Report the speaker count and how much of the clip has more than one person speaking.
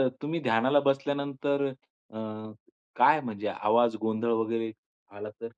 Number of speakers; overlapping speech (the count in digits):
1, no overlap